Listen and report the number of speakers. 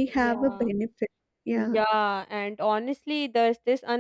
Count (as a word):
two